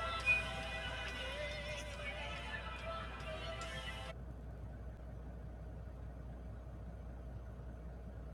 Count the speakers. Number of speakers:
zero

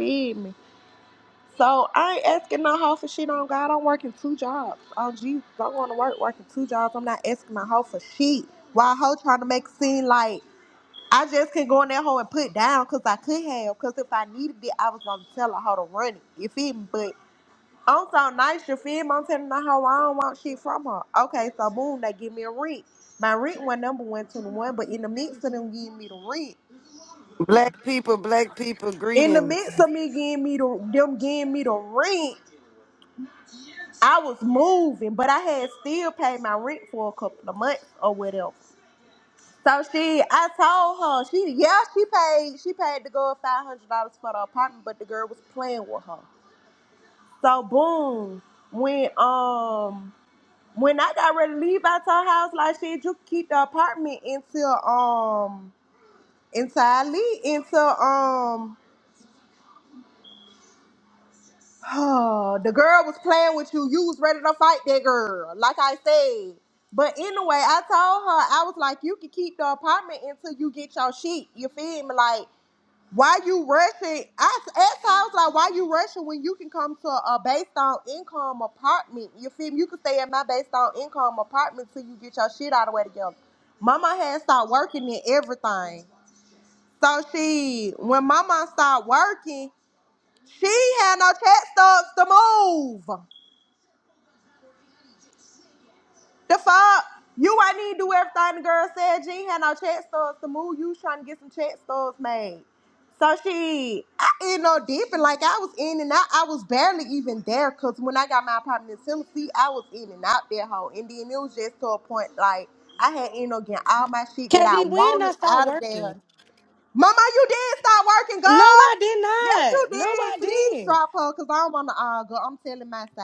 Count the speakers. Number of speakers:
three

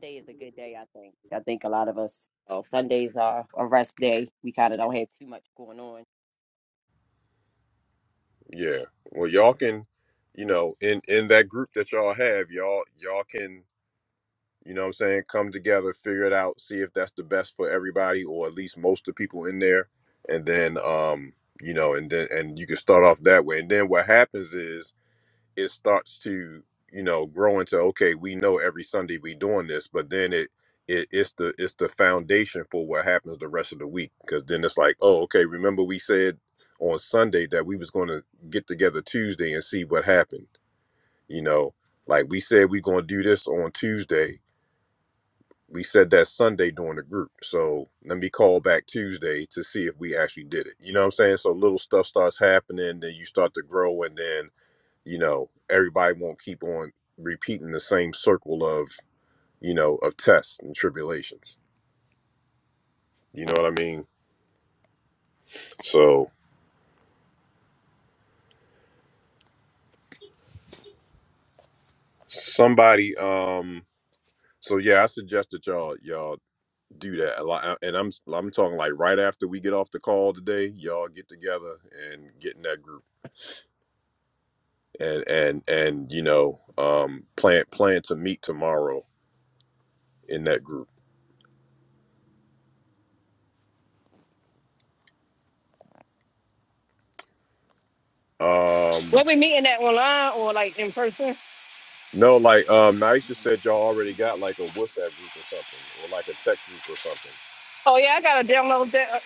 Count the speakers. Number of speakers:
three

